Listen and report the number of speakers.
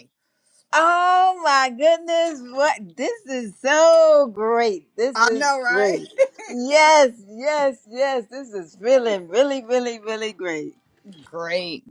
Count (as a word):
two